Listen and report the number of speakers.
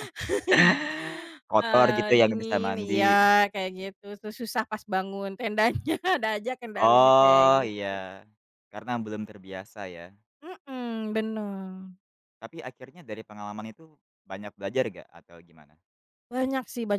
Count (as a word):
two